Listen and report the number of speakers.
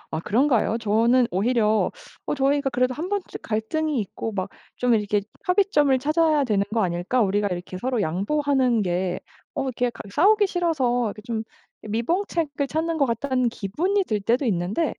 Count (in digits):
1